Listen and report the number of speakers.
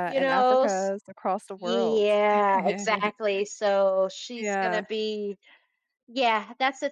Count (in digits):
2